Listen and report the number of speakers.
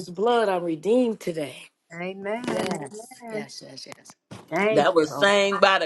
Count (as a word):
three